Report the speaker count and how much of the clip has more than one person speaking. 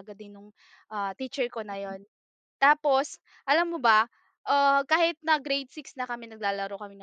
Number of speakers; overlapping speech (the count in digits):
1, no overlap